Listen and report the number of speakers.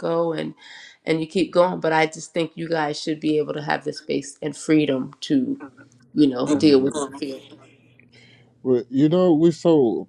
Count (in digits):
2